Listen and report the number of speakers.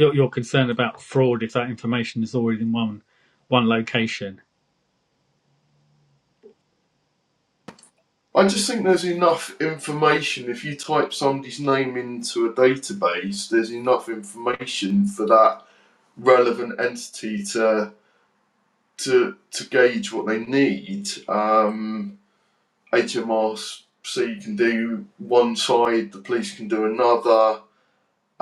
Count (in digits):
2